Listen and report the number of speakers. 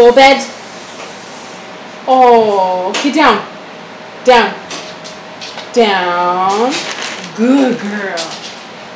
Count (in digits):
1